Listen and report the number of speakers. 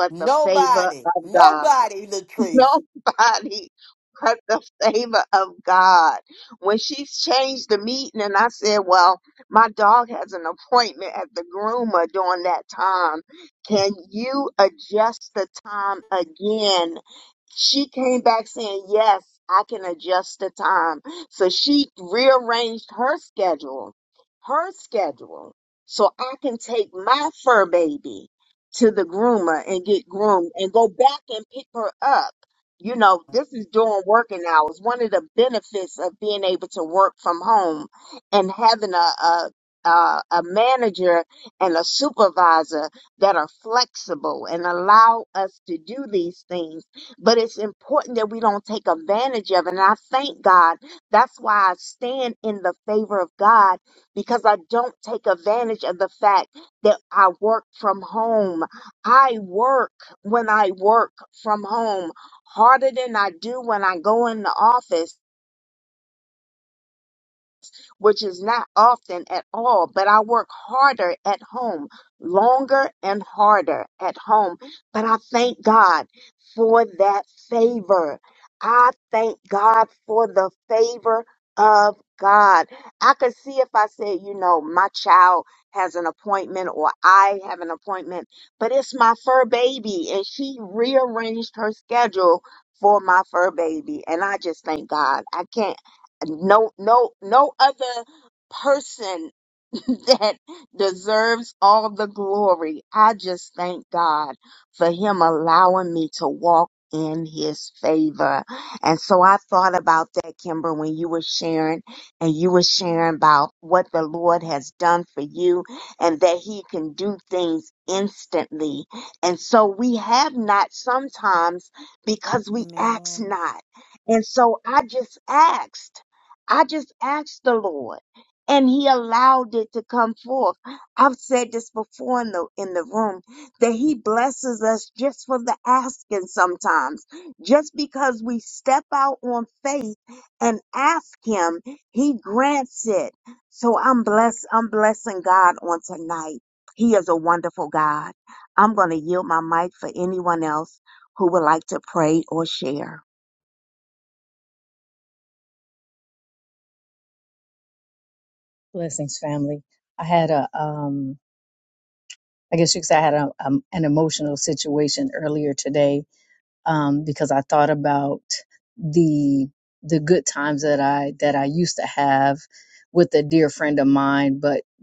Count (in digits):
3